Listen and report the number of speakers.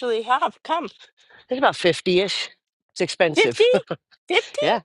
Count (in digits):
2